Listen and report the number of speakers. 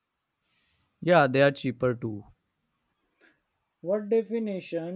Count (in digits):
2